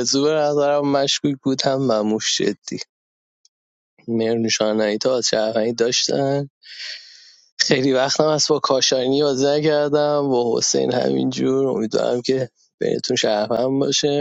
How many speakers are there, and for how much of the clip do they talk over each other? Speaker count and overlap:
one, no overlap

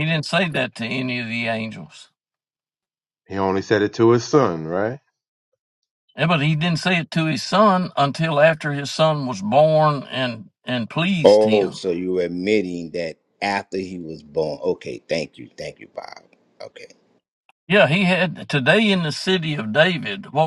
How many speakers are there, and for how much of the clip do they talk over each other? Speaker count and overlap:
three, about 2%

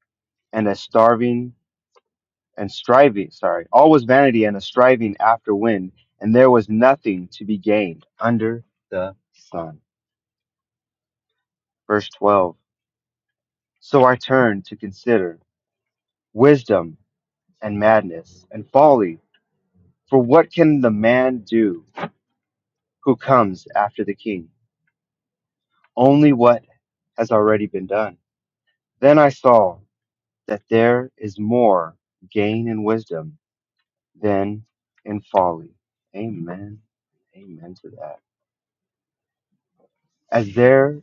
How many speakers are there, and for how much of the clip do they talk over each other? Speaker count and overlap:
one, no overlap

